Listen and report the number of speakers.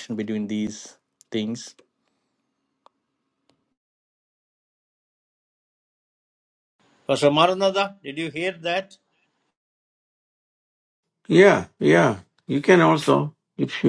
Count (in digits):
3